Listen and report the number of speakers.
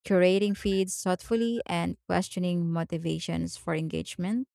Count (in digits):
1